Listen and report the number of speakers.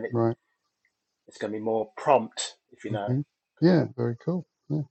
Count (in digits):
2